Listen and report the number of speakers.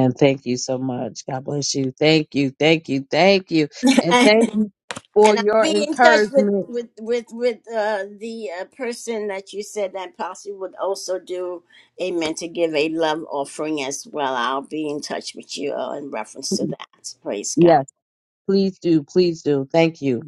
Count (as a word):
two